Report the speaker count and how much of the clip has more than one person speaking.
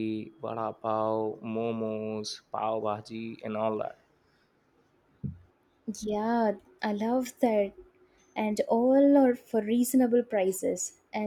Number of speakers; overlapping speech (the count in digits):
2, no overlap